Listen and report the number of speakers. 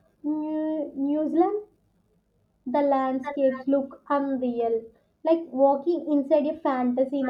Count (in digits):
1